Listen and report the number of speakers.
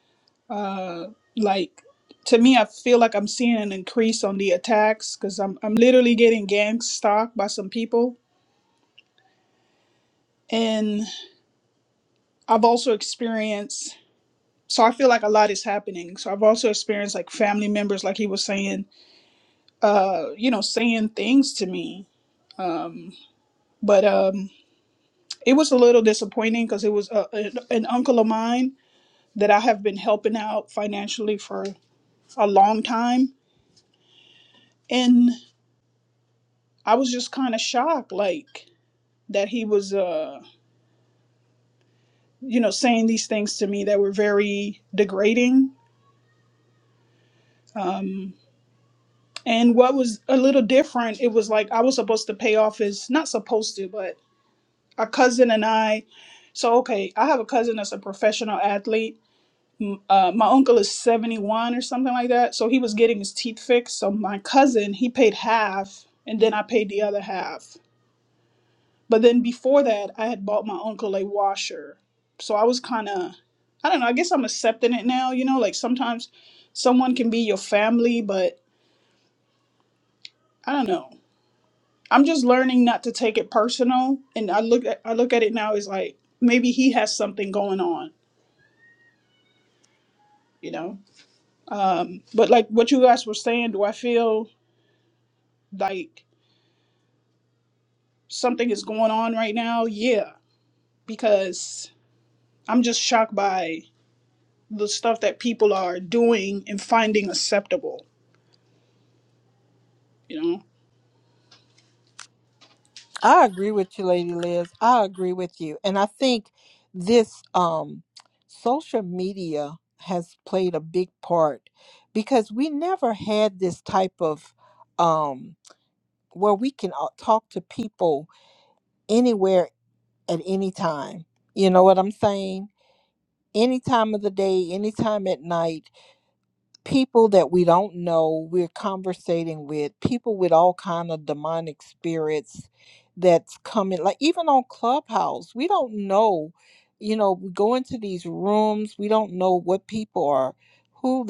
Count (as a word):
two